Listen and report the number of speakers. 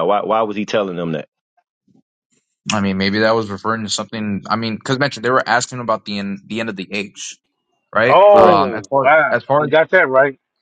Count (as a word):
three